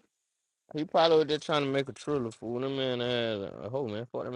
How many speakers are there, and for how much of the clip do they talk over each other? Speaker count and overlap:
1, no overlap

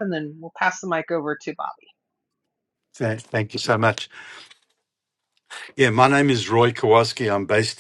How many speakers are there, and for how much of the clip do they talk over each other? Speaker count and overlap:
2, no overlap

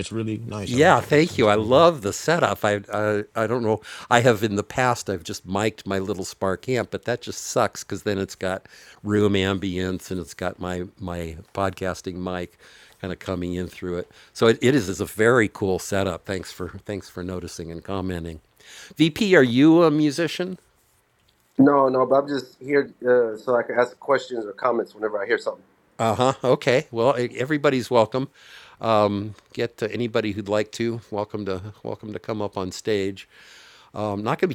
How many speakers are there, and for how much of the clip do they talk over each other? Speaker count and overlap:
3, about 3%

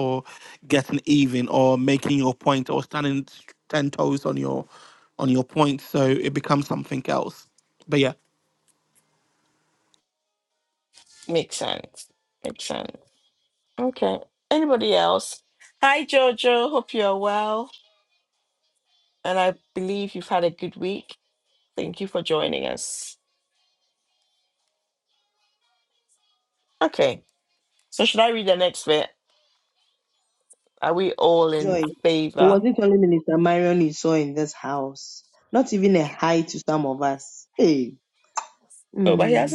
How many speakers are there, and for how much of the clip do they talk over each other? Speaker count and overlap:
3, about 3%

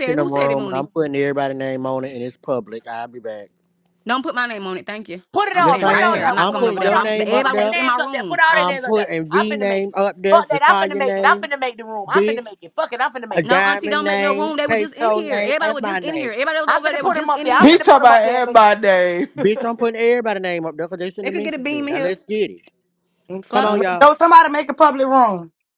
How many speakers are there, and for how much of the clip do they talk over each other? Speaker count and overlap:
5, about 49%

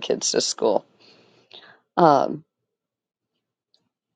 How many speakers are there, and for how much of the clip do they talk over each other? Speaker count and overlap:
1, no overlap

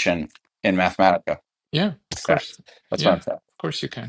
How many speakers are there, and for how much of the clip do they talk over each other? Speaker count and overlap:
2, about 10%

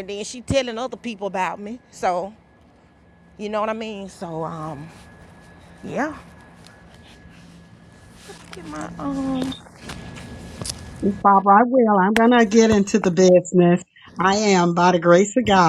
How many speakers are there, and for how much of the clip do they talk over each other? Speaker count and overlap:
2, no overlap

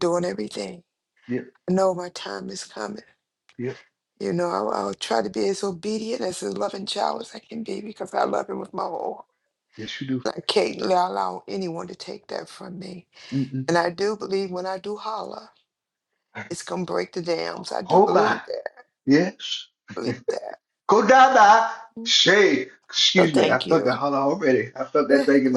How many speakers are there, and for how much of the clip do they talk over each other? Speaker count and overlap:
2, about 6%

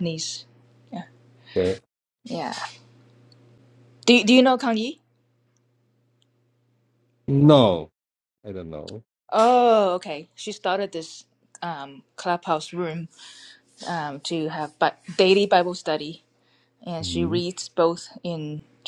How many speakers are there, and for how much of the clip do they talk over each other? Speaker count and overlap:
2, about 2%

